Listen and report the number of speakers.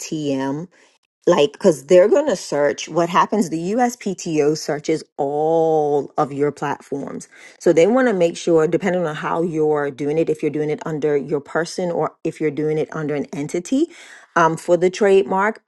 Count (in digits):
1